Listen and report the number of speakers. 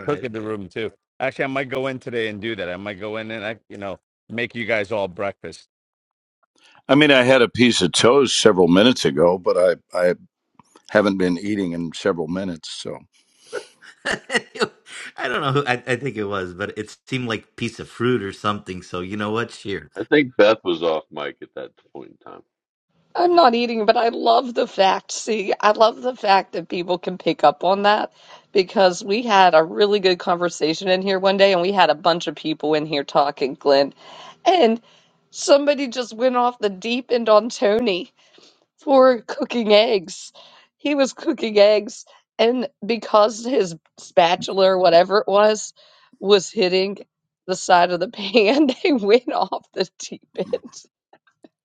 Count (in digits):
5